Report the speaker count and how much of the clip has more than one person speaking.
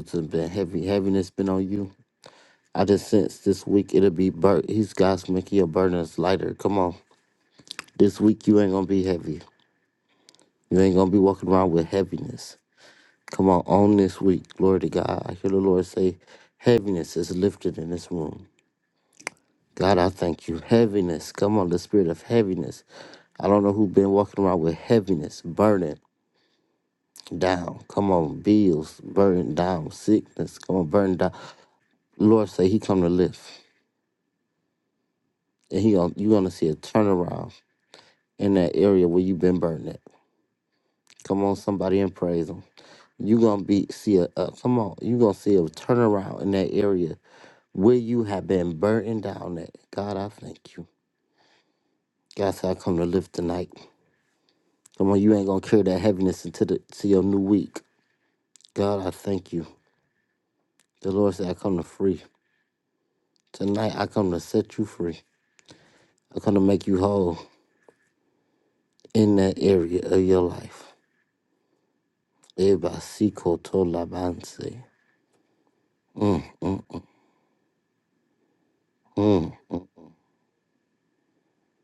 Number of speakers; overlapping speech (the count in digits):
1, no overlap